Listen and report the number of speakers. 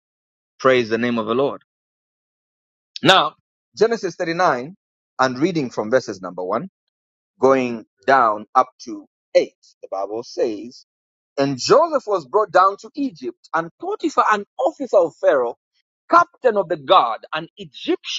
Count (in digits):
1